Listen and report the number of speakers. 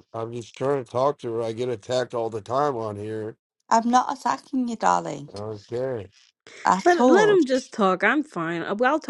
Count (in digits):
3